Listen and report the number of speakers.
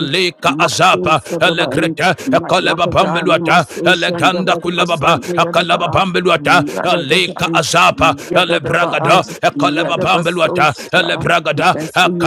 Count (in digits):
2